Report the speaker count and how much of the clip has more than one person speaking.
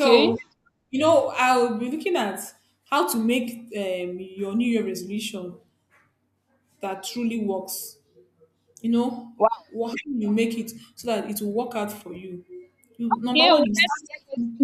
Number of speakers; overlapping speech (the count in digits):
2, about 8%